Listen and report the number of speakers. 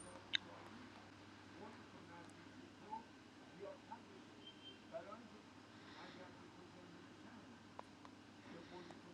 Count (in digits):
0